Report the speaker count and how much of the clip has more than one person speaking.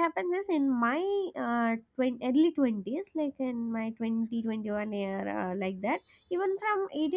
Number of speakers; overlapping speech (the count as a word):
one, no overlap